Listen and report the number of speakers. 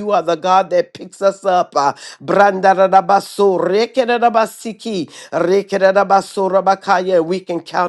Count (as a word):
one